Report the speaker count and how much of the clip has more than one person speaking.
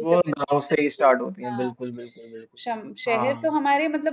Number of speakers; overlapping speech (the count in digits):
2, about 40%